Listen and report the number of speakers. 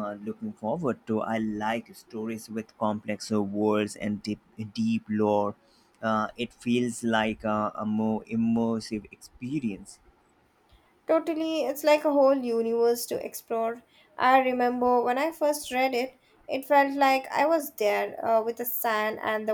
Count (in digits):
2